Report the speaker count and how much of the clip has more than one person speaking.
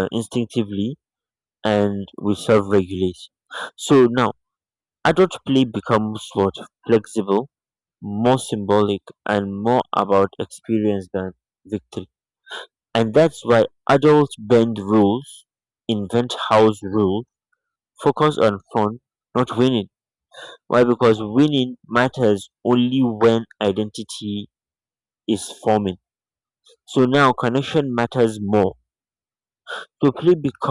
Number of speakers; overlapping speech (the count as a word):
one, no overlap